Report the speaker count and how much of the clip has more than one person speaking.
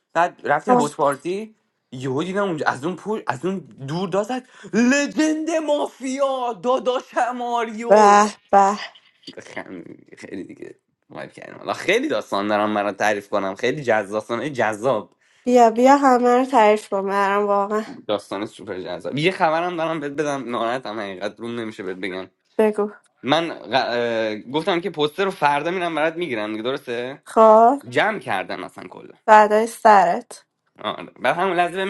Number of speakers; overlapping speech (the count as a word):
two, about 2%